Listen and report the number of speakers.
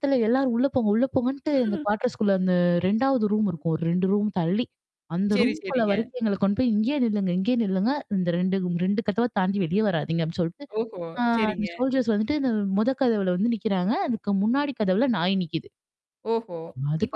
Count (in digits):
2